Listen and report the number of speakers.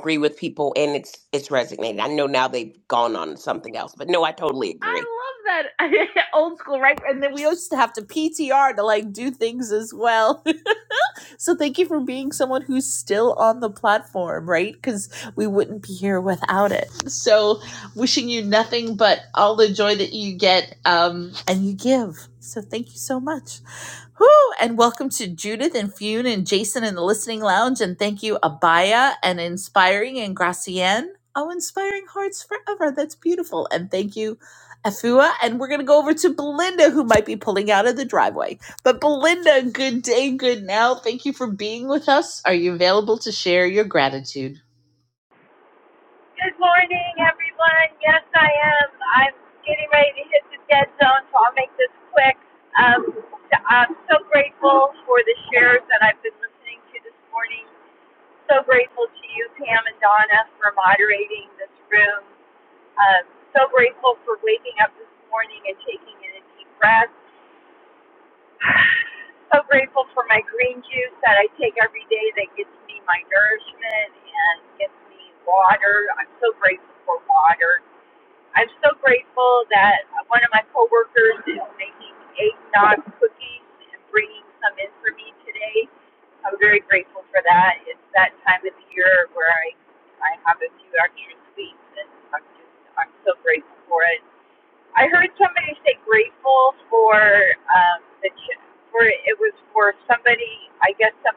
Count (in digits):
3